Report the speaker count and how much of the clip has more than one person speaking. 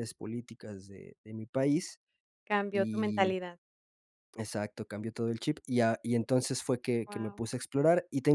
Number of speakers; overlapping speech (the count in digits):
2, about 10%